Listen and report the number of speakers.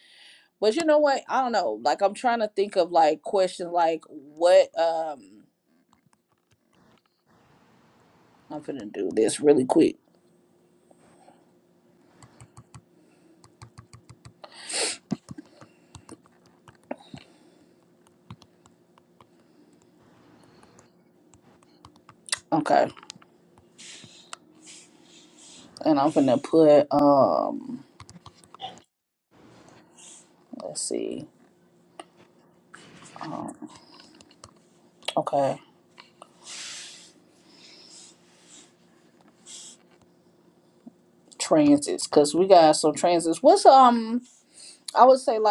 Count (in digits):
1